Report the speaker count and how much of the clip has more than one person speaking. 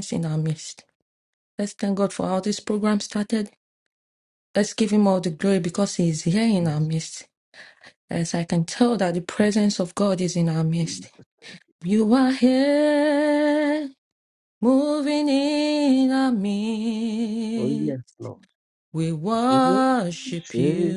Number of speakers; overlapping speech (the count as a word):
two, about 4%